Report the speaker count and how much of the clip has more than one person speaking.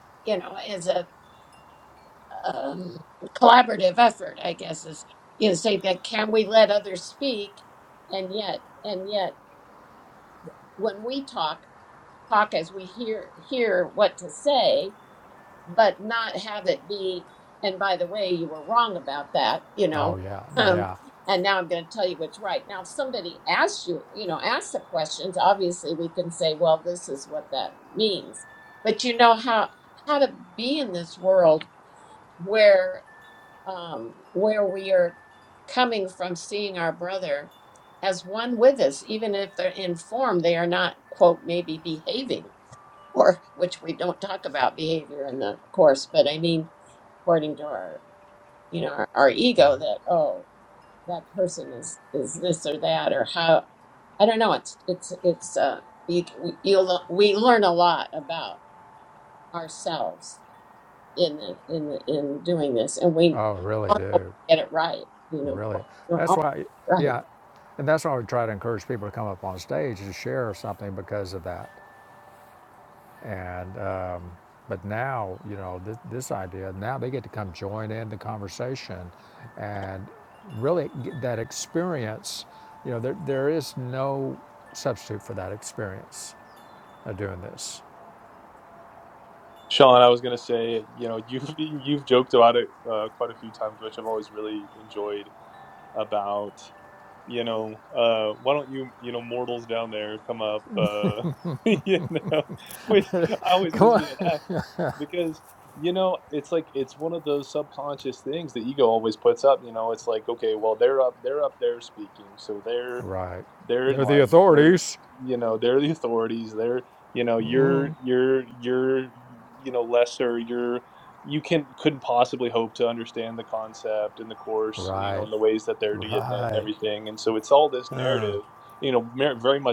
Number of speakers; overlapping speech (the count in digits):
3, about 4%